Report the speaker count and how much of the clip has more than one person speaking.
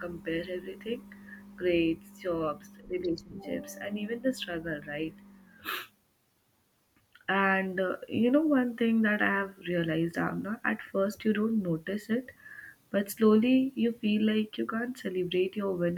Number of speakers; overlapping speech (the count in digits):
1, no overlap